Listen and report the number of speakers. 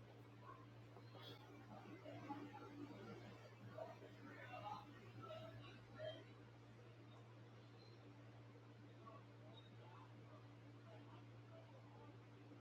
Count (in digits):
0